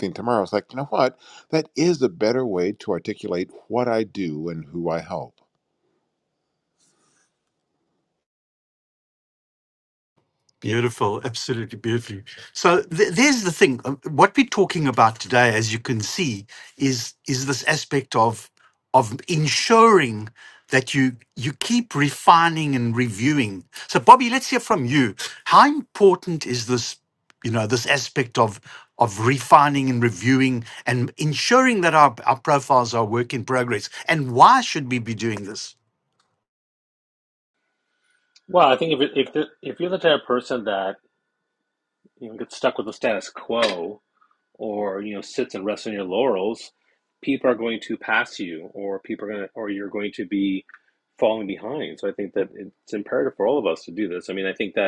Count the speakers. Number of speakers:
3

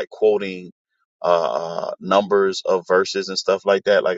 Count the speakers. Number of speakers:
1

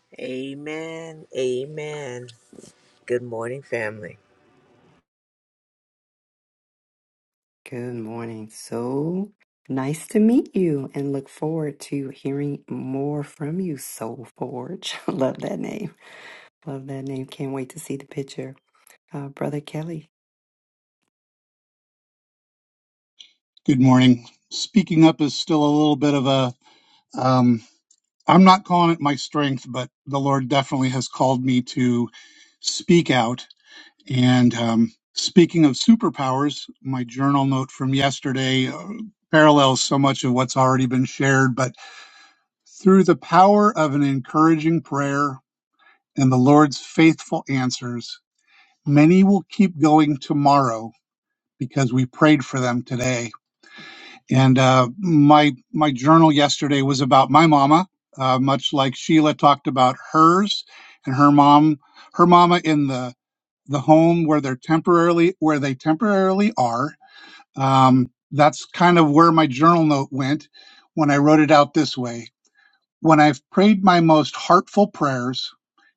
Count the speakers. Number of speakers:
3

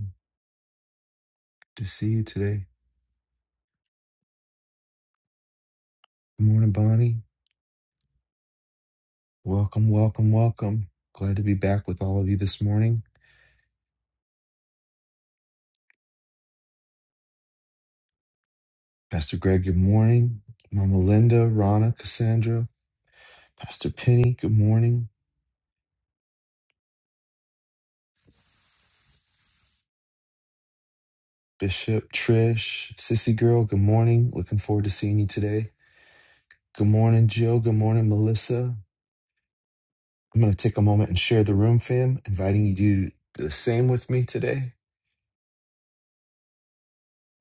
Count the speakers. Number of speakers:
1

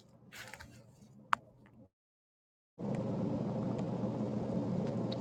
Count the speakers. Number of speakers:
0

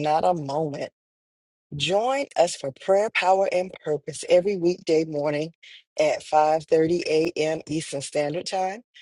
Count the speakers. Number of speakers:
1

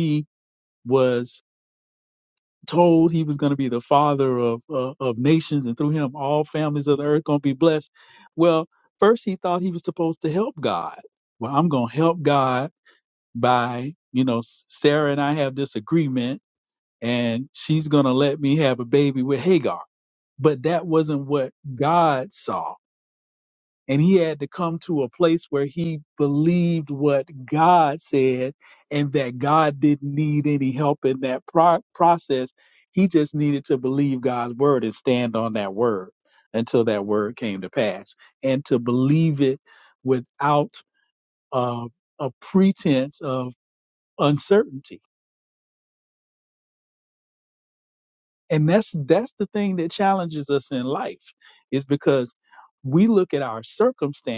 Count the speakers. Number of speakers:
1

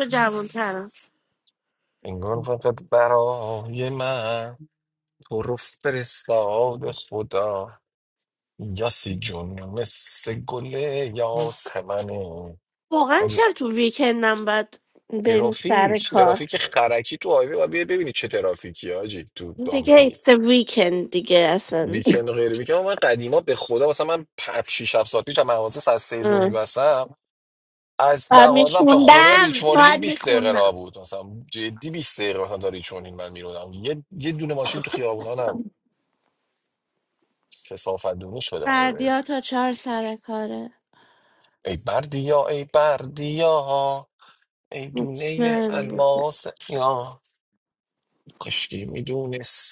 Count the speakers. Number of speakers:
2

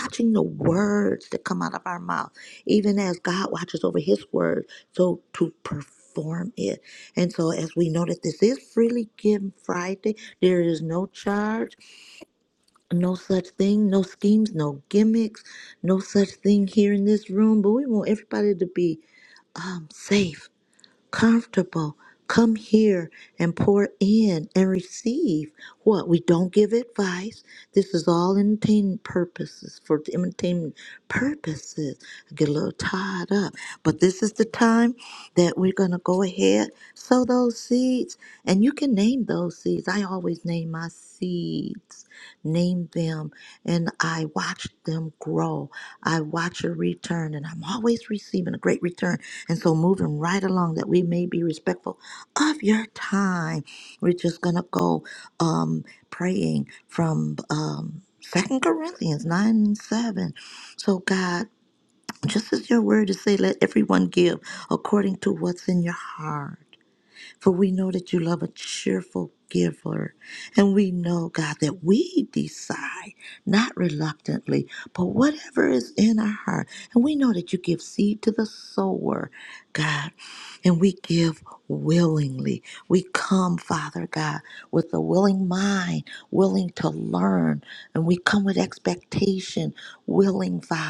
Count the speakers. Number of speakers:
1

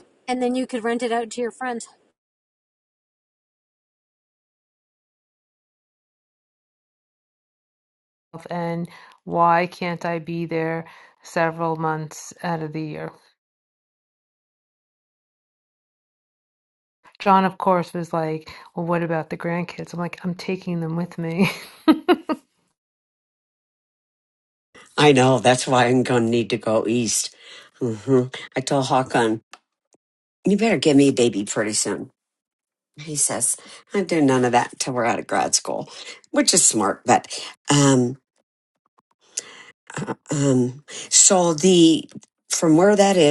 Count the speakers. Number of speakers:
3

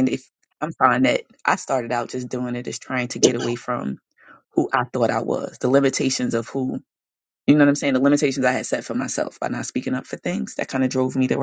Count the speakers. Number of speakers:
1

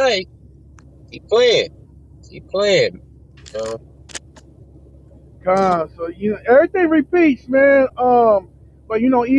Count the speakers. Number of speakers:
2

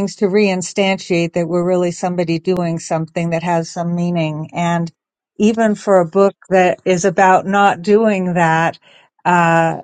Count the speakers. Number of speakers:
1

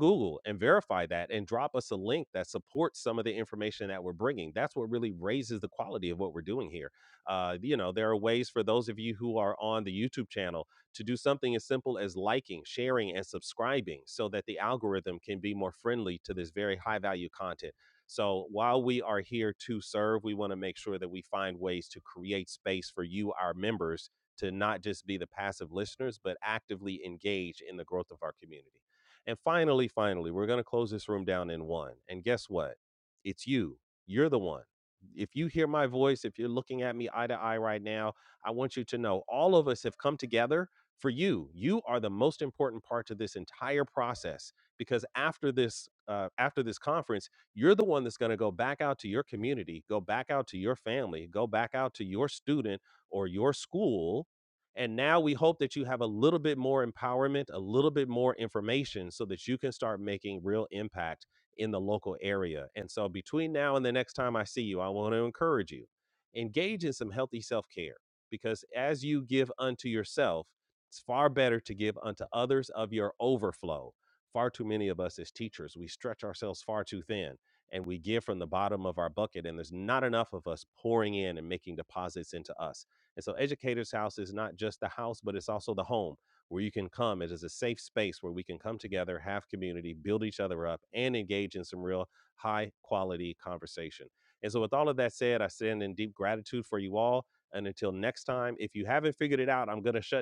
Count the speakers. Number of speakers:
1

